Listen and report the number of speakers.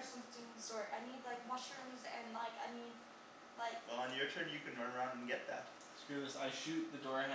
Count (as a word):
three